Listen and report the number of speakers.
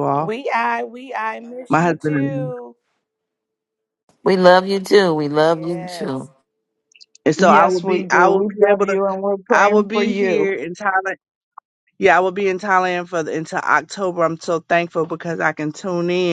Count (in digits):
4